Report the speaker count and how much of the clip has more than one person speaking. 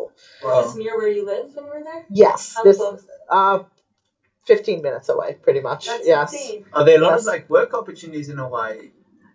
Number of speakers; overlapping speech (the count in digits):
3, about 20%